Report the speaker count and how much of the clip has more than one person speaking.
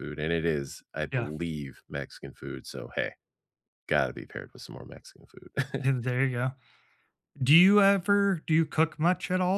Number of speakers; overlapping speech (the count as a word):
two, about 2%